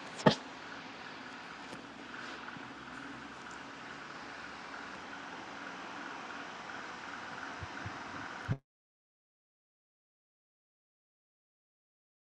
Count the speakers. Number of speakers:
0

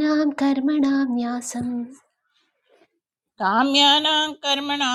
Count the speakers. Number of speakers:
2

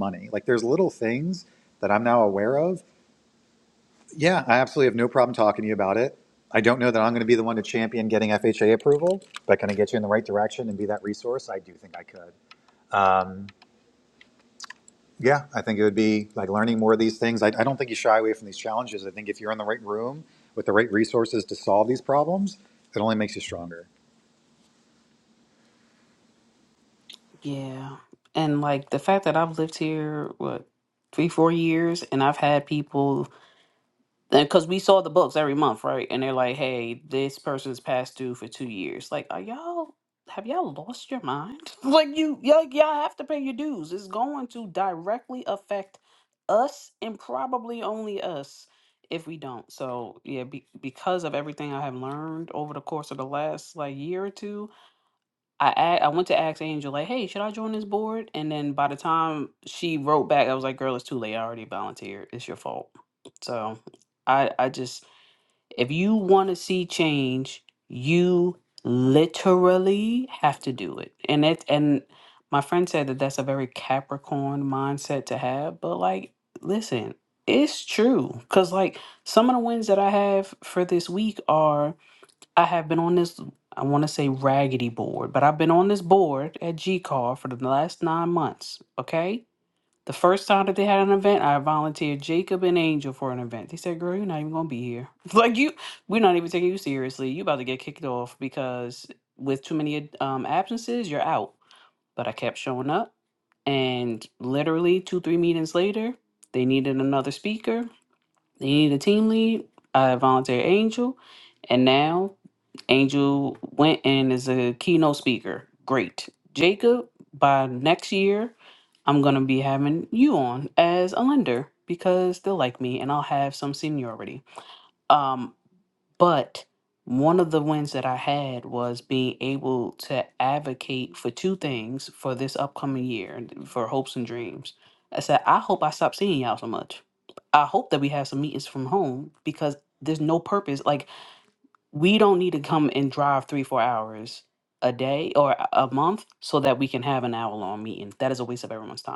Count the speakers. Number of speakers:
2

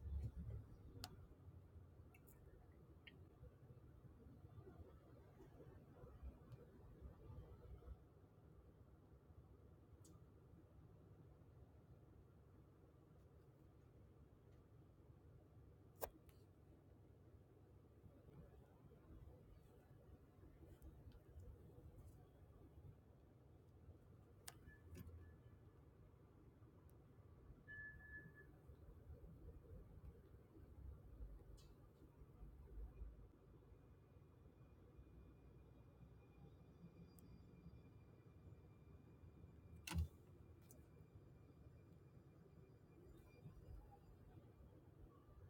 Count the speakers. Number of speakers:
0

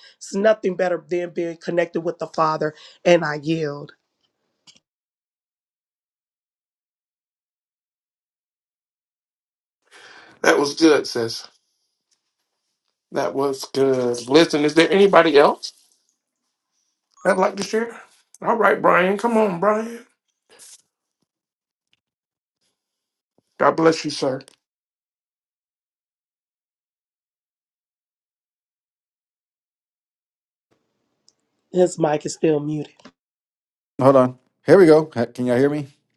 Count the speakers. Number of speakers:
3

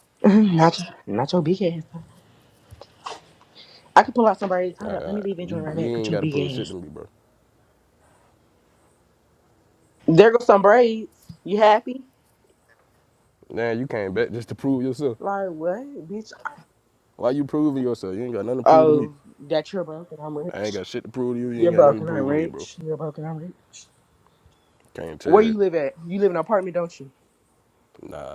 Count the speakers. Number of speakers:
2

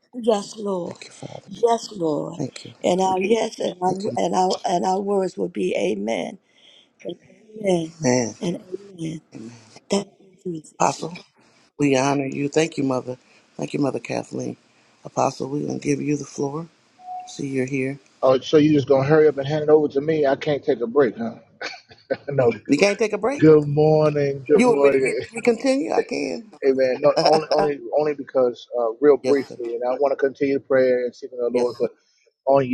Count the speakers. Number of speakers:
3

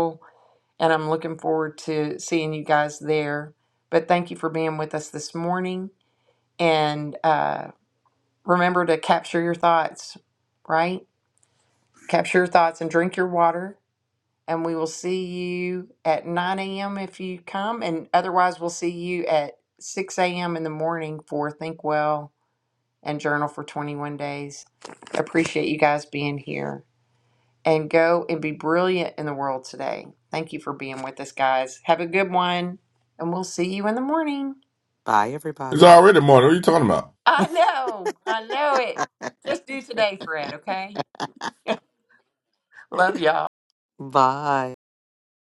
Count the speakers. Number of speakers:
3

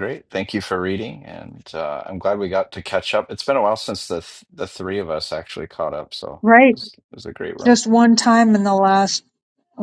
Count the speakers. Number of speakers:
2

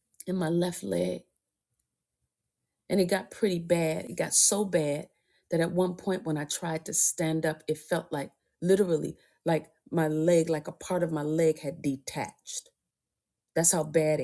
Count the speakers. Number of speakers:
1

